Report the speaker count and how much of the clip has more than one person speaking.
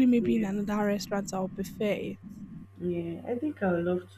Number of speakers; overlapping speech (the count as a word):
two, about 9%